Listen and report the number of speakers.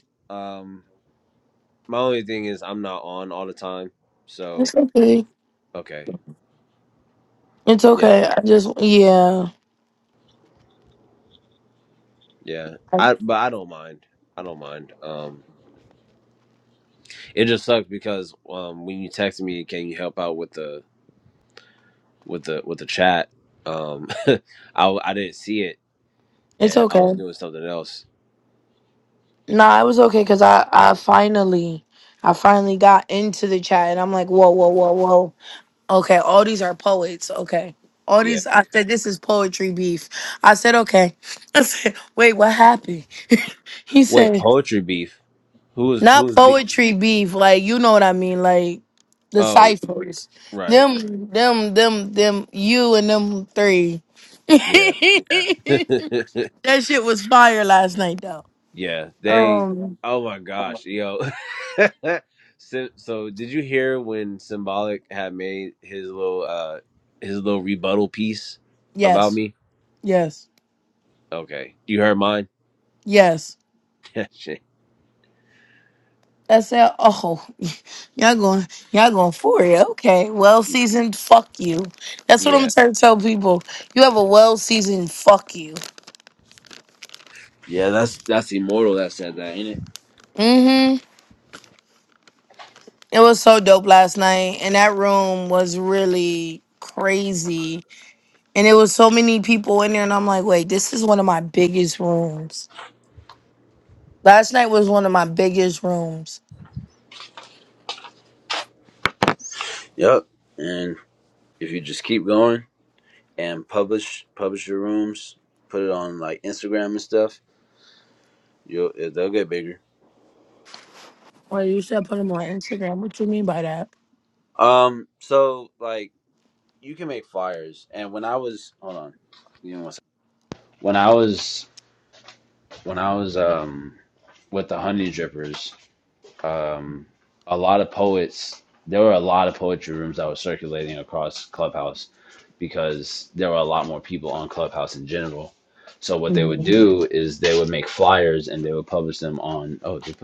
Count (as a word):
two